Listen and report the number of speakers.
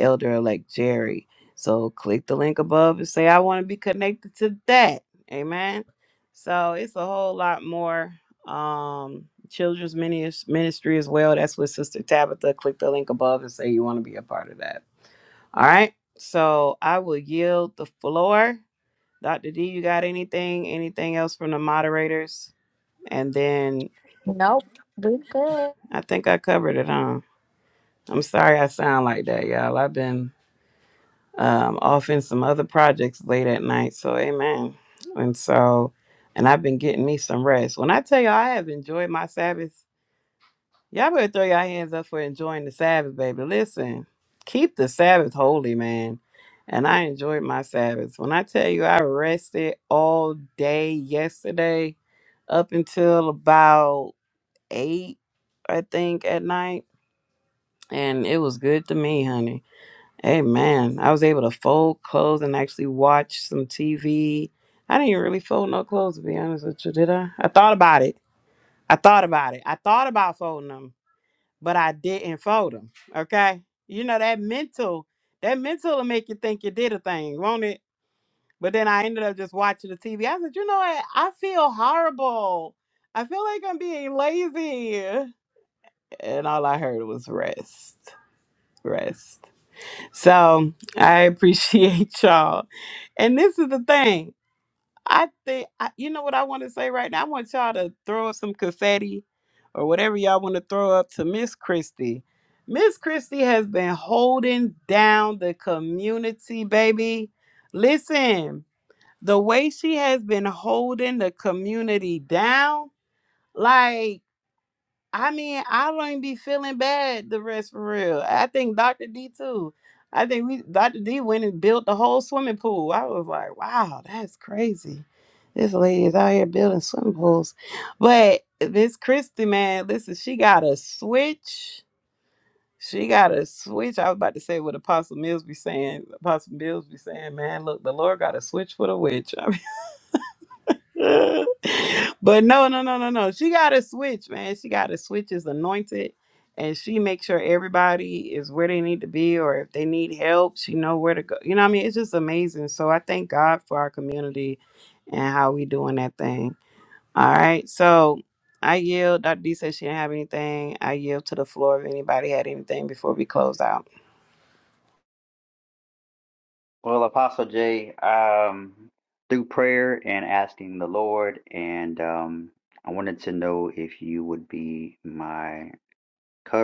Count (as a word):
three